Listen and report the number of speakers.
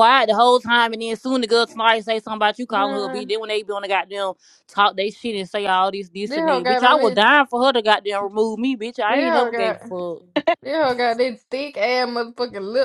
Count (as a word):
two